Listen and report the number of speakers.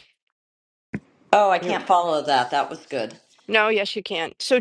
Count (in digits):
2